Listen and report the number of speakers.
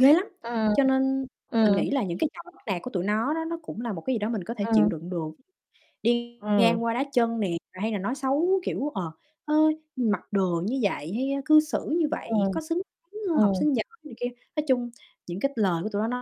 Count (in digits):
2